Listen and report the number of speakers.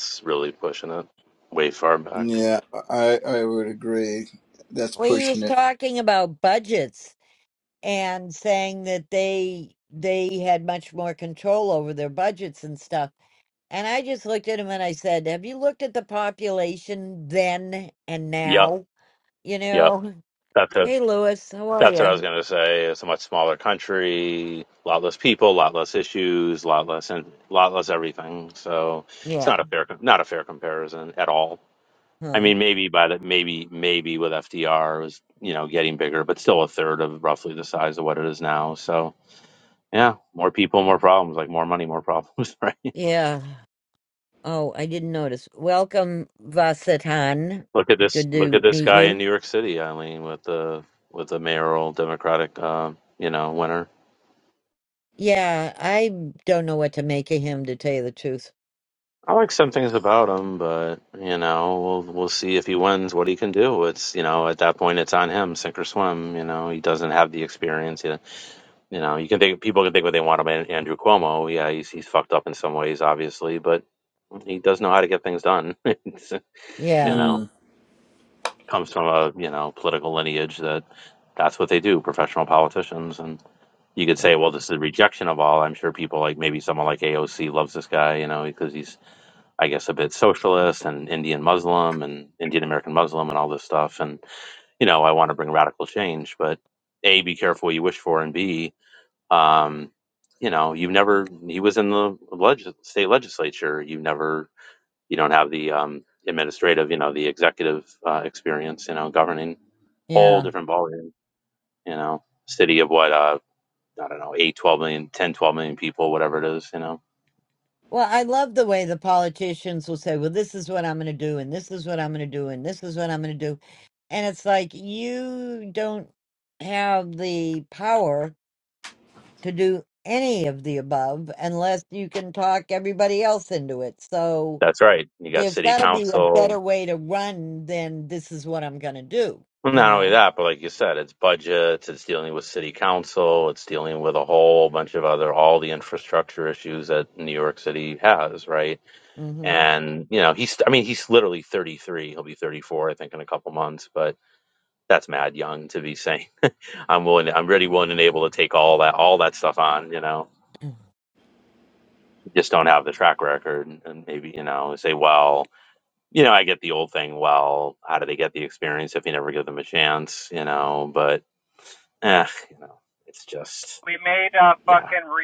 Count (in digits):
4